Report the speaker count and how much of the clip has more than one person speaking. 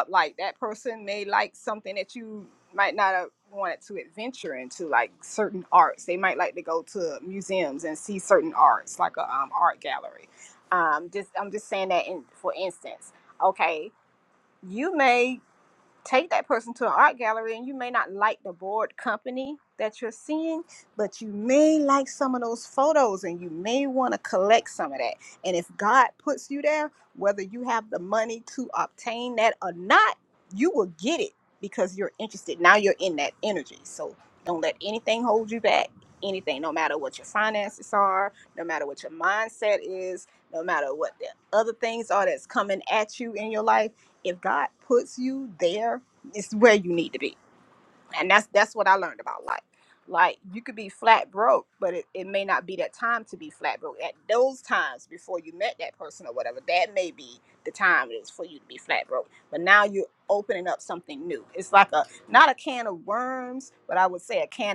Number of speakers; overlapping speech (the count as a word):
one, no overlap